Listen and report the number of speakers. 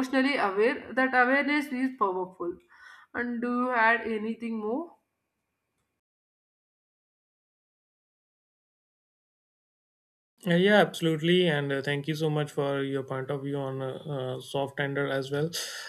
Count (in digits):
2